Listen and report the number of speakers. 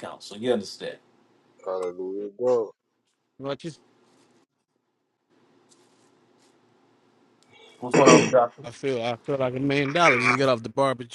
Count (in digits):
3